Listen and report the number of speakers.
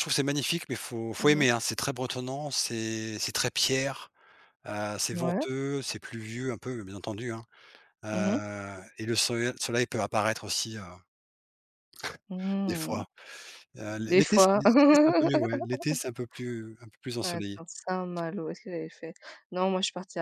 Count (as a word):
two